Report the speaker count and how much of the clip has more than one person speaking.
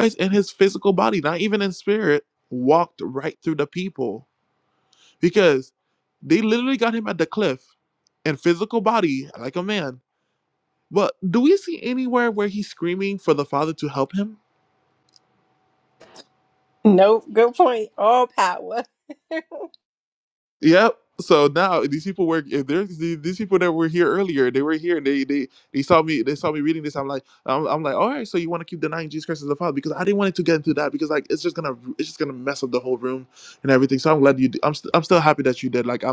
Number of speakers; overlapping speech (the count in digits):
2, no overlap